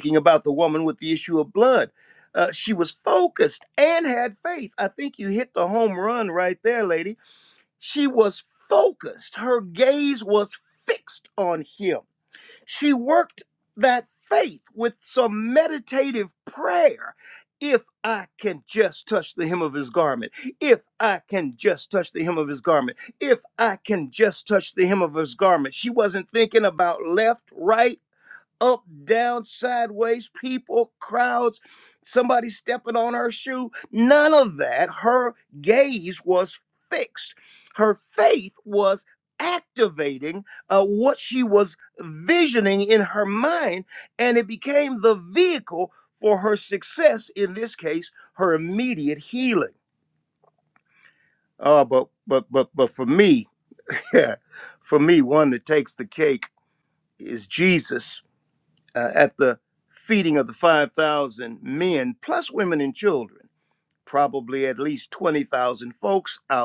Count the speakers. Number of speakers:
one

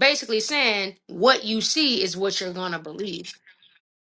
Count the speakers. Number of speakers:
one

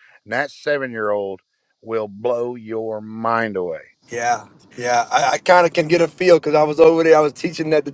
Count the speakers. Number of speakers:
two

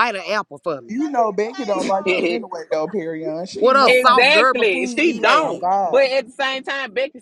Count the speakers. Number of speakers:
three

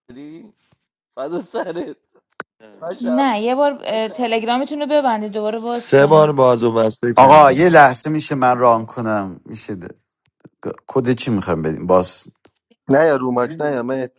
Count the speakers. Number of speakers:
five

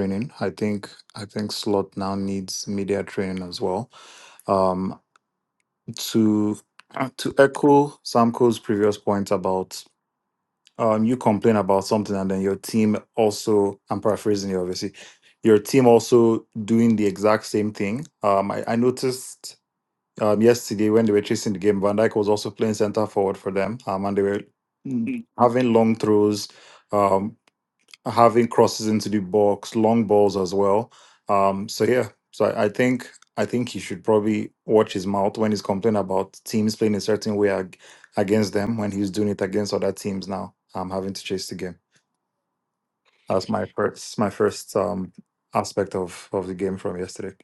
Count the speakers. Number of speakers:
one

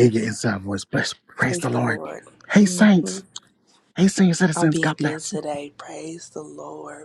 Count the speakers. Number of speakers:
two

